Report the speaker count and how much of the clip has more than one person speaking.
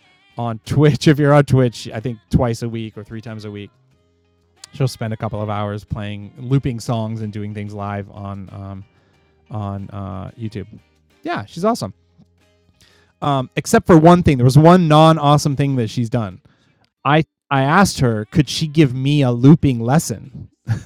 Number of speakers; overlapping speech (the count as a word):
one, no overlap